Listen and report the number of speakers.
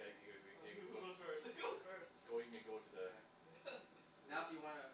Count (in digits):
3